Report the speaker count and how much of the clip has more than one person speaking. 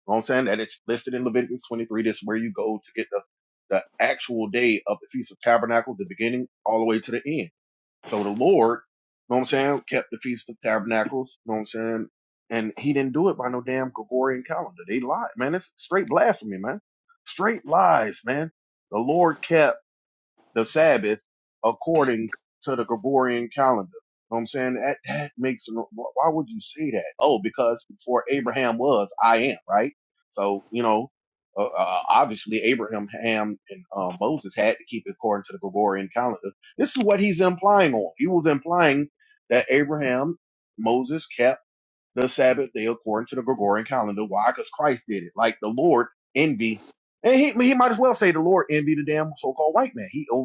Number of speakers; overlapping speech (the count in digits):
1, no overlap